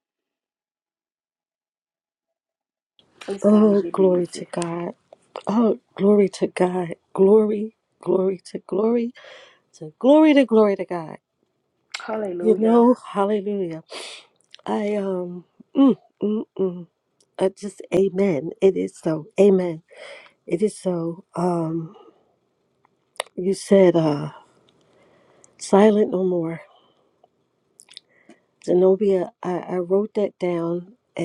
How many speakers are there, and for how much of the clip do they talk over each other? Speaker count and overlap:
two, about 5%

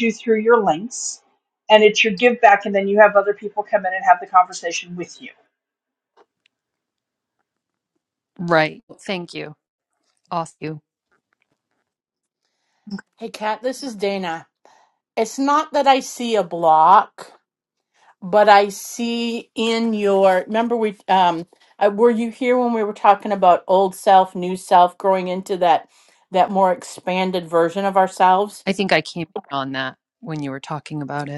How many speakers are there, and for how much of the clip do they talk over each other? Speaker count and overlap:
three, no overlap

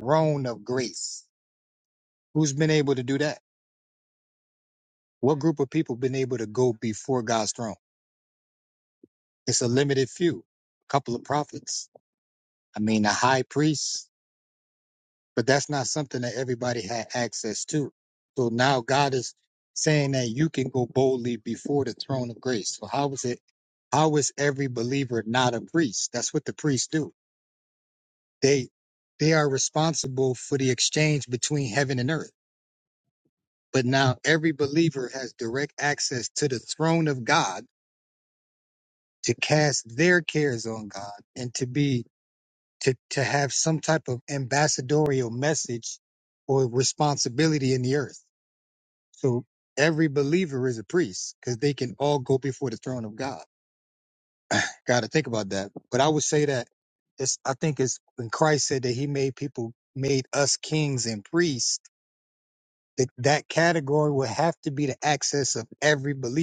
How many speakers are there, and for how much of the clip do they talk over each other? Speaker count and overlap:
one, no overlap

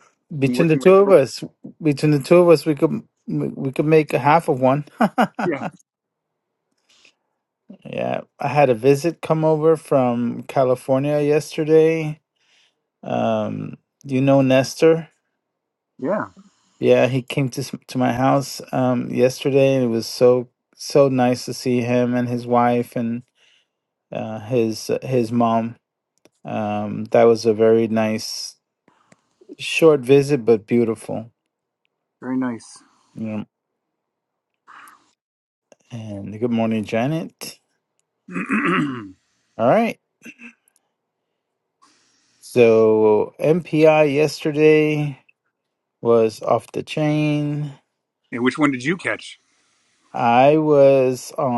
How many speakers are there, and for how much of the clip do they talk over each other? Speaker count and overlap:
two, about 1%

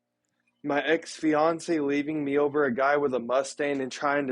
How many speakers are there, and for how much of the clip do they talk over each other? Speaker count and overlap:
one, no overlap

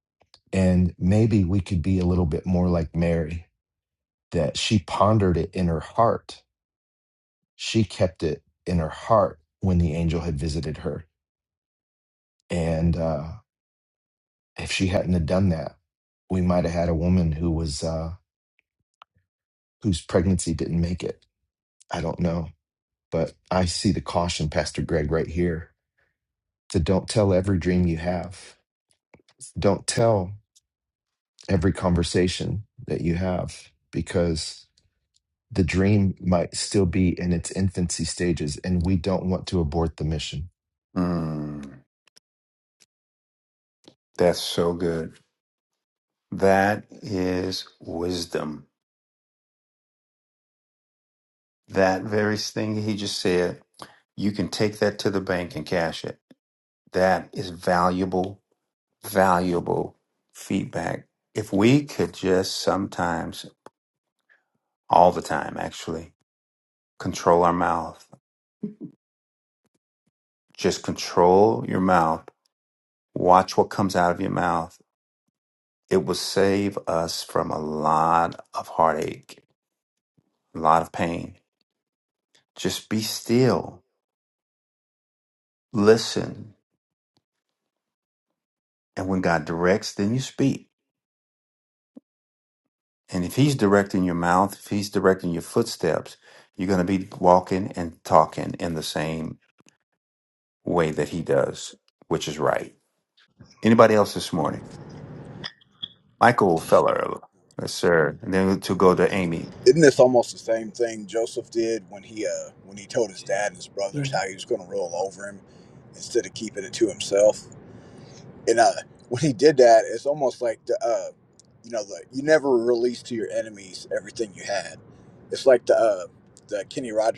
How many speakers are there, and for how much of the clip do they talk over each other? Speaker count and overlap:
three, under 1%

